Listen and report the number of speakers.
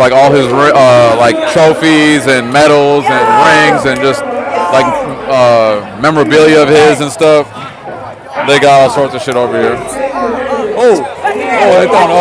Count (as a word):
one